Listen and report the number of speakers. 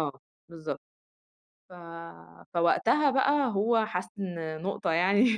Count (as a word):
one